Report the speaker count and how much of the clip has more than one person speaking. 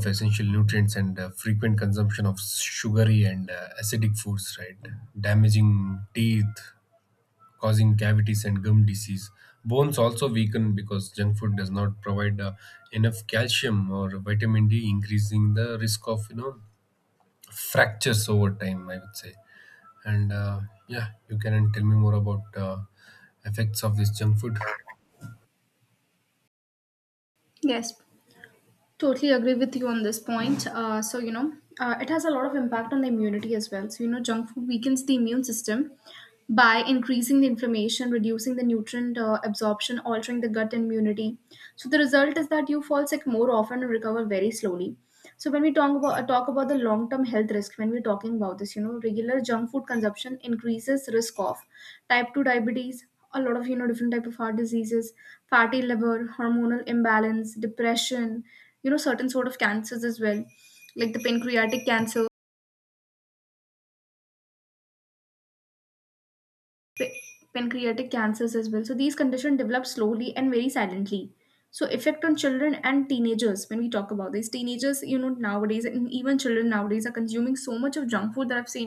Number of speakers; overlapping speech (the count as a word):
two, no overlap